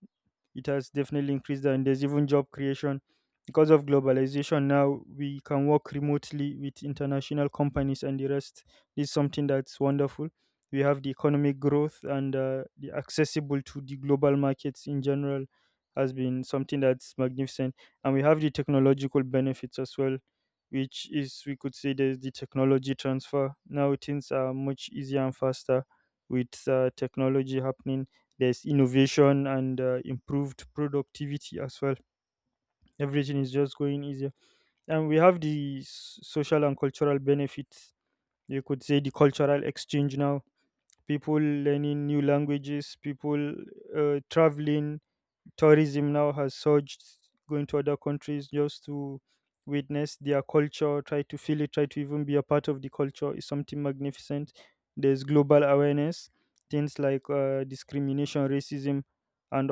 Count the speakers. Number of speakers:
one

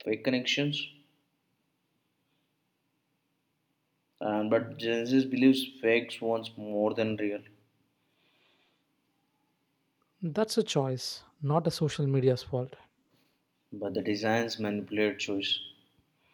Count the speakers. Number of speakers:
two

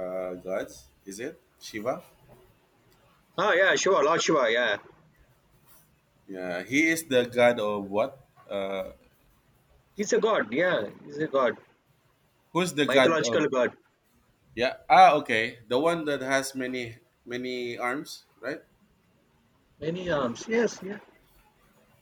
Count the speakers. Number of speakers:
two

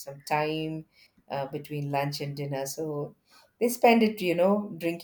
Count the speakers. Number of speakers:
one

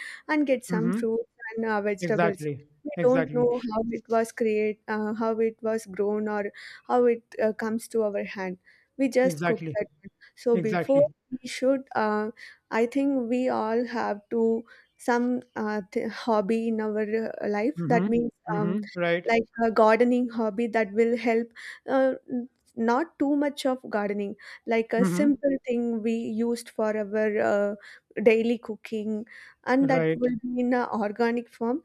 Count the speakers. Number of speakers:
two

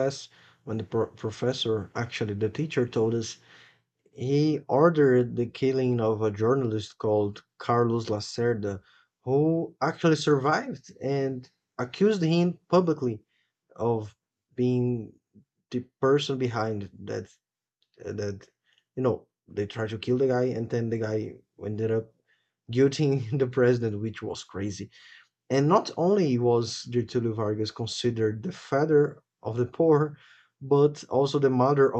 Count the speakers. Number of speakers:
one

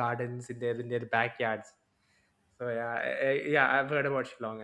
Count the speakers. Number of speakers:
one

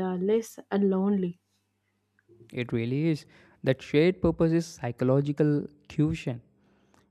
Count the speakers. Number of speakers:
two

